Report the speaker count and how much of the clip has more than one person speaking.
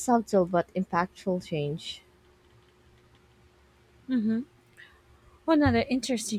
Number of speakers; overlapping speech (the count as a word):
two, no overlap